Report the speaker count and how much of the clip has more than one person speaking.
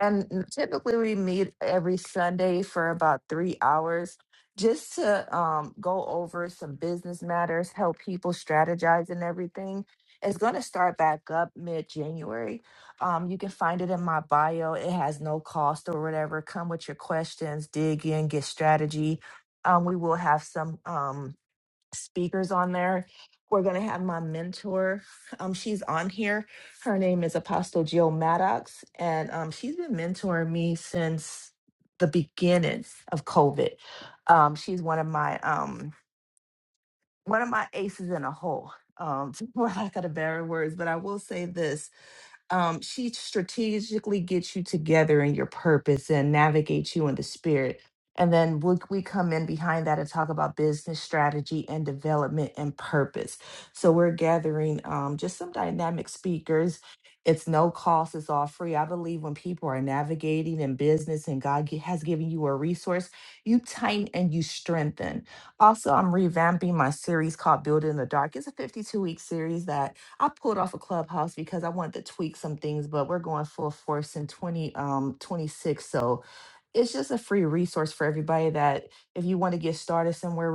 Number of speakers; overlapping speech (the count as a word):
one, no overlap